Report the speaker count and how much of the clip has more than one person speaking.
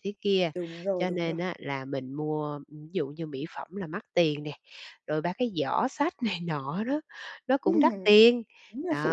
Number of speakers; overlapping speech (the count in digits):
2, about 10%